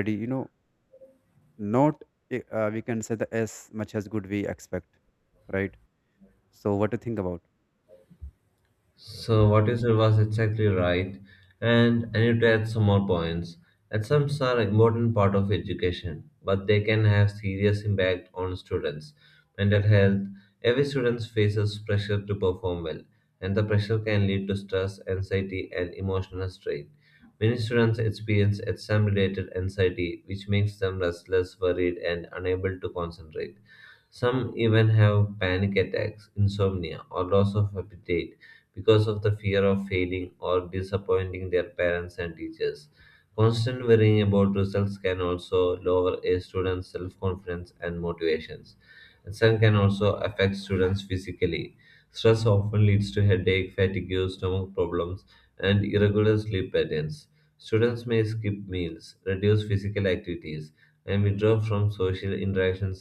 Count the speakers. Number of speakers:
two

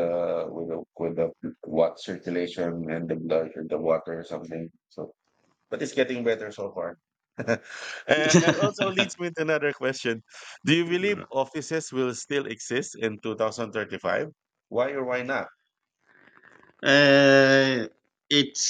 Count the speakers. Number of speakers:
two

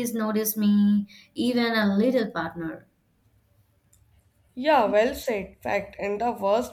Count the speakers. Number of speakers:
two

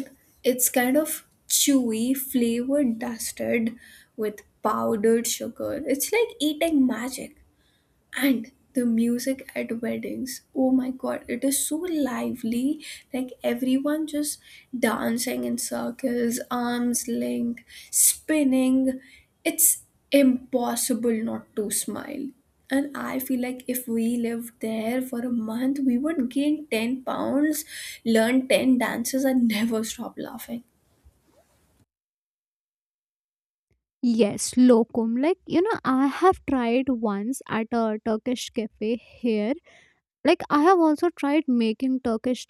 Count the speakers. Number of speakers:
two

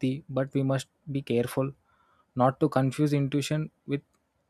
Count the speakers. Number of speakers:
one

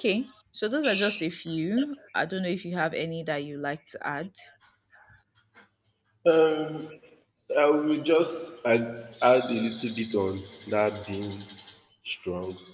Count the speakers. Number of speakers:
two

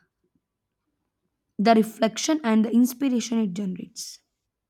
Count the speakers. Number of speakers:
one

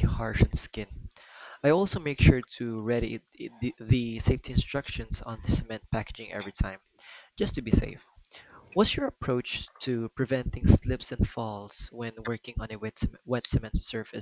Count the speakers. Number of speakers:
one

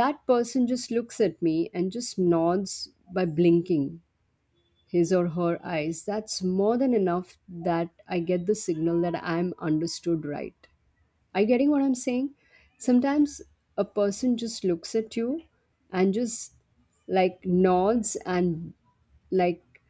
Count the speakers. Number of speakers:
one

